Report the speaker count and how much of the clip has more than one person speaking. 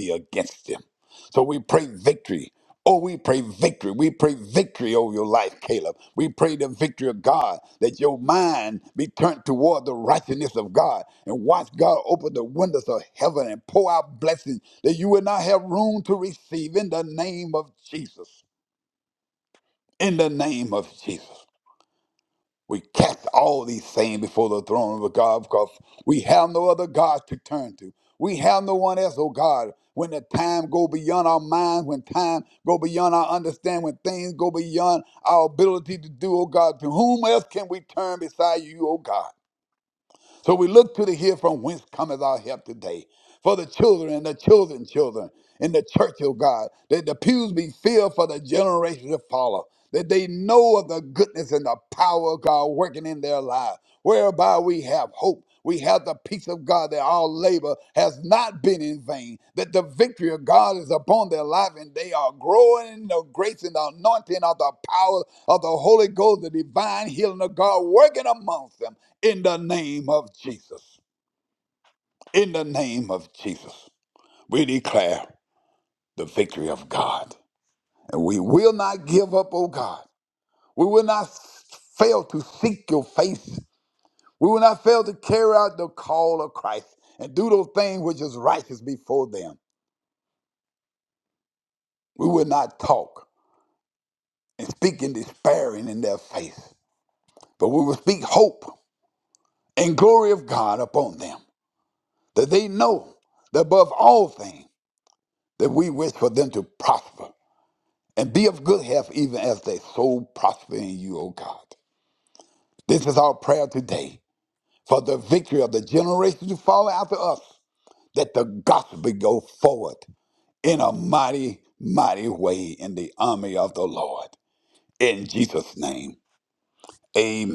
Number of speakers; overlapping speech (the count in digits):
1, no overlap